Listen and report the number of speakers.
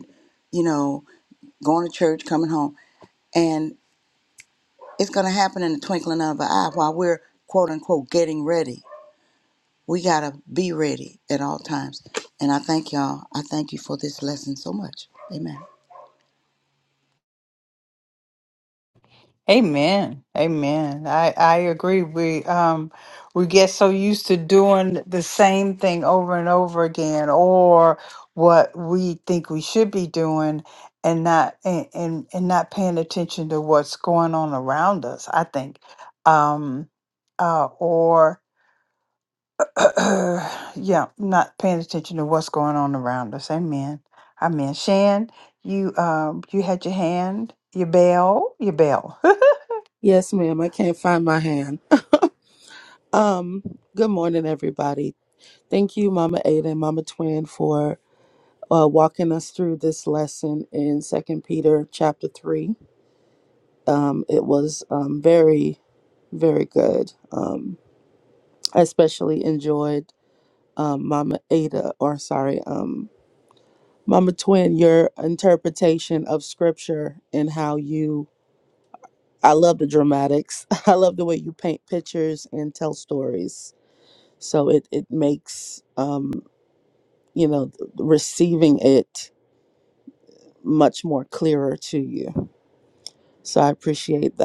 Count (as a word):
three